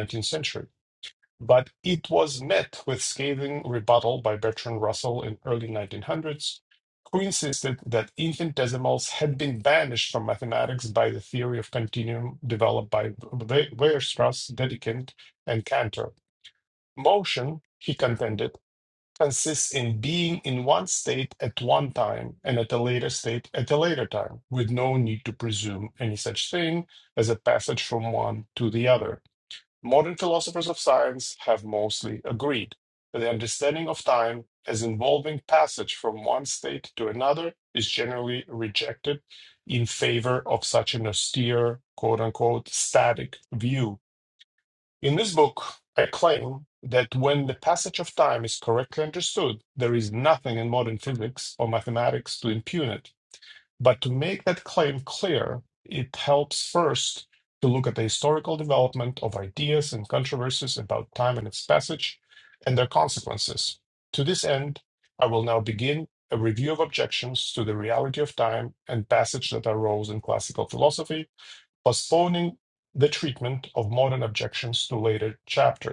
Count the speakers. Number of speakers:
1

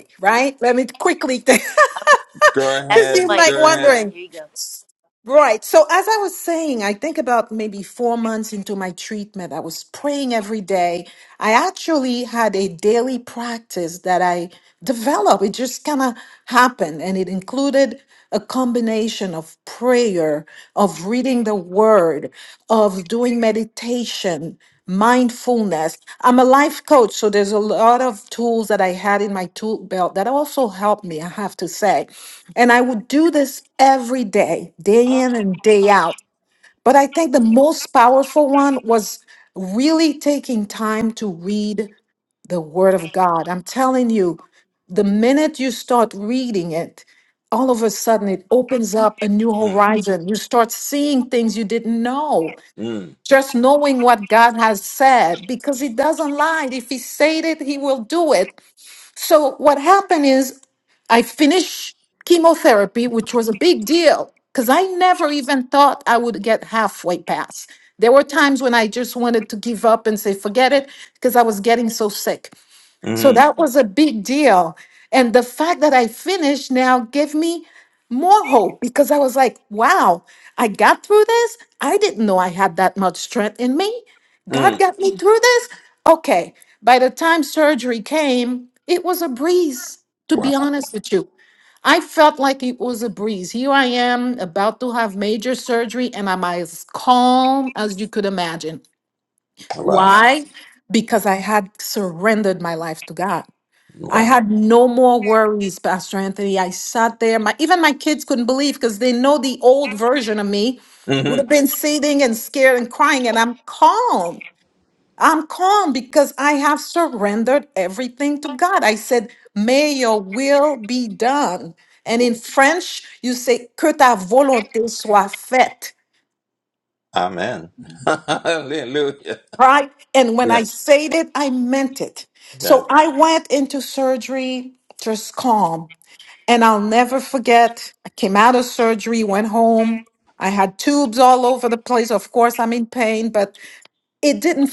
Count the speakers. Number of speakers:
3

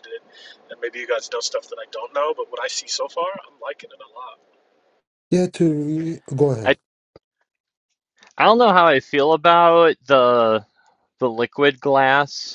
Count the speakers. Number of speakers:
3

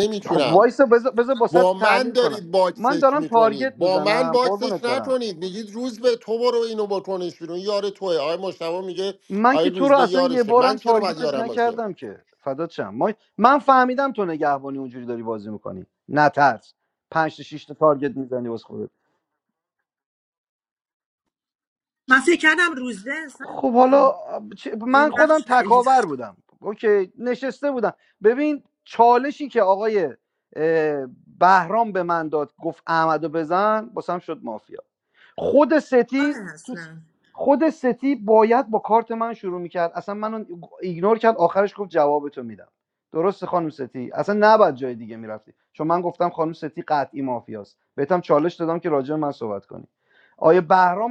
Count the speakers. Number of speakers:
3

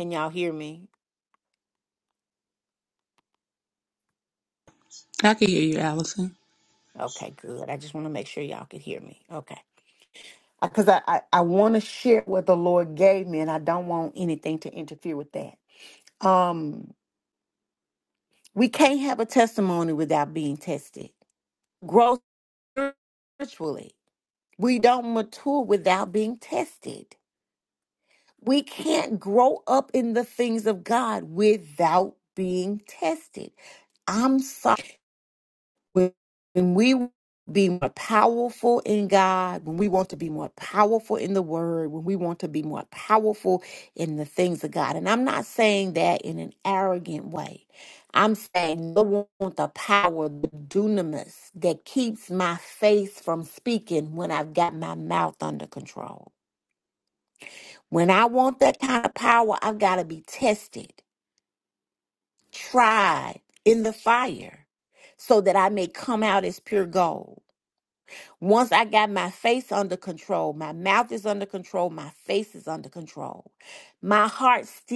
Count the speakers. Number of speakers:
2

